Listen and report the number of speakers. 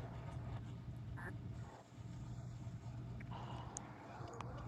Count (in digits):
0